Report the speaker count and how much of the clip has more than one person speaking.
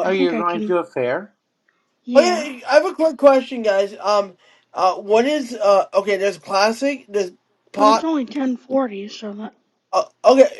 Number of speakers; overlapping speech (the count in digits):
3, about 13%